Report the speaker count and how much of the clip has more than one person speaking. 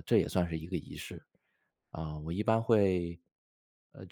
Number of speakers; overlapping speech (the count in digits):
1, no overlap